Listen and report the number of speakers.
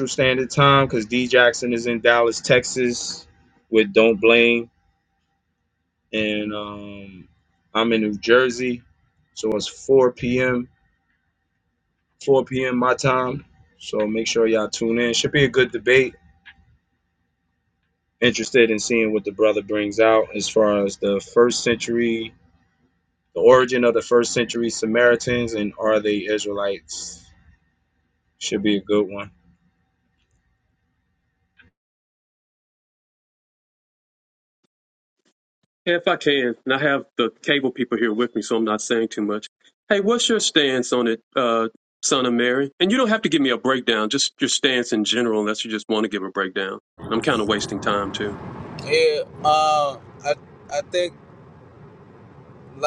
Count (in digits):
3